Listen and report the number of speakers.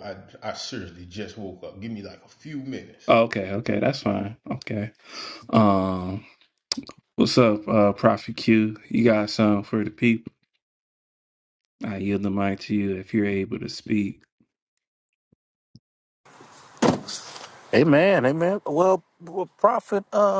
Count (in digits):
3